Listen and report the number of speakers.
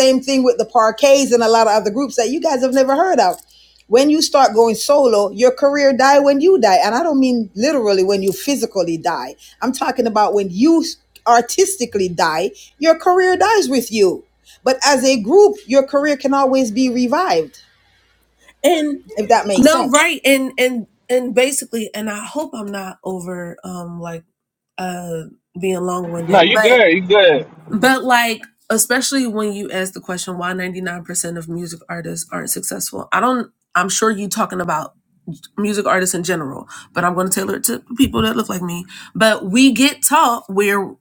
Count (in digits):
3